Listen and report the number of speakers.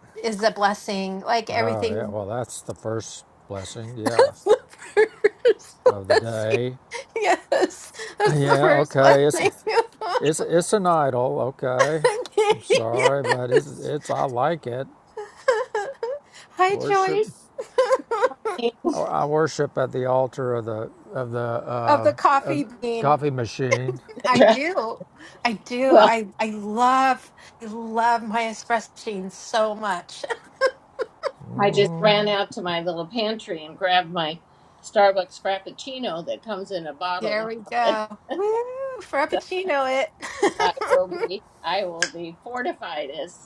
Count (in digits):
3